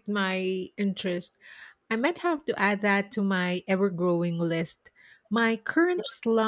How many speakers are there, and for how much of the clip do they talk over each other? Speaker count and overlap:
1, no overlap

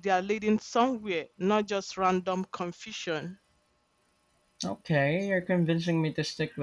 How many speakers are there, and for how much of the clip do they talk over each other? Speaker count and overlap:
2, no overlap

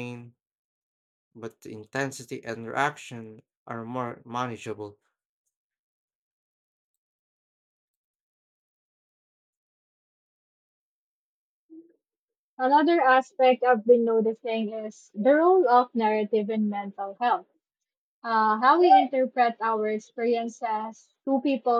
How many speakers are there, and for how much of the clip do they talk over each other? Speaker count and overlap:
2, no overlap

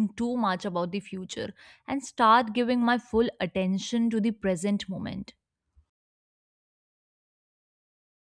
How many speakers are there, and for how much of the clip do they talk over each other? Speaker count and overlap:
1, no overlap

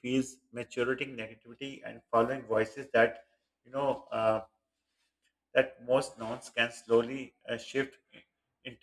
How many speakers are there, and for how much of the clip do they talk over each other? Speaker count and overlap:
1, no overlap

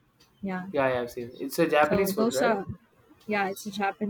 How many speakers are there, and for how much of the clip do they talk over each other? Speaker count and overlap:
2, about 17%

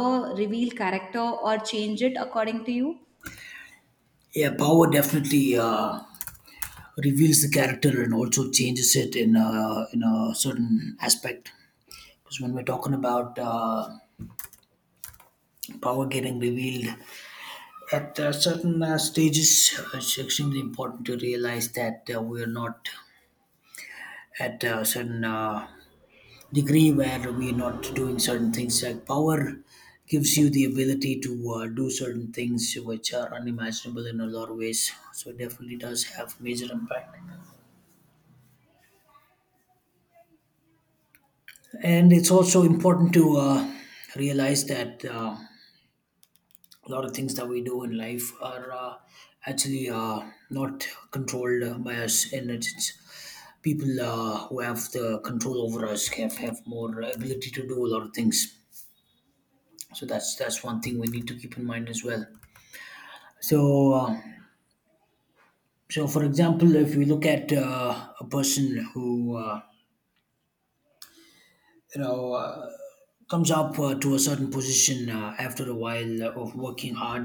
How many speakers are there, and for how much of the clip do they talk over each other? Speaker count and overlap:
2, no overlap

